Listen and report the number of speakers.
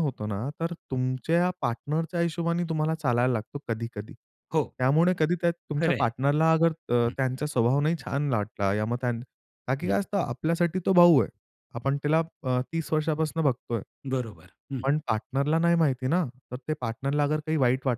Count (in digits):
2